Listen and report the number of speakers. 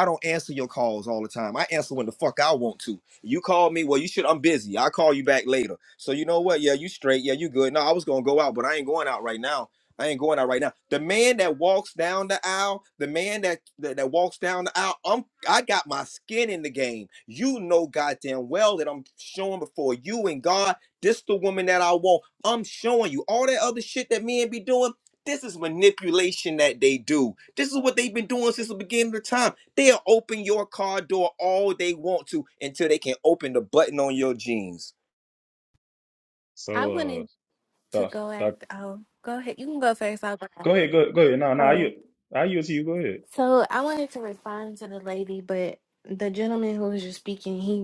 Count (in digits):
3